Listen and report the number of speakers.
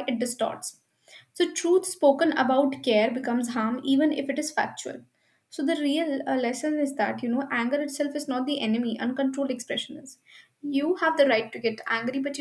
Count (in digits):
1